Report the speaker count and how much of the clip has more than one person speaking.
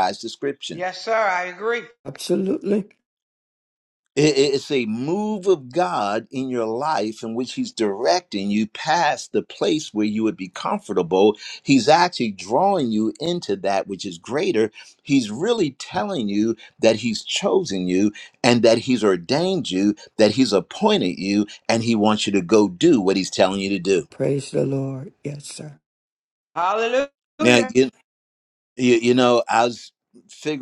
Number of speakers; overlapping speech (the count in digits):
3, under 1%